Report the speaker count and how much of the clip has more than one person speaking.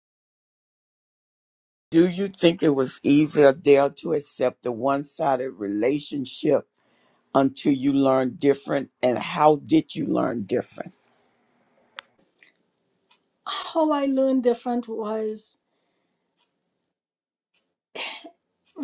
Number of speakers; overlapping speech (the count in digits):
2, no overlap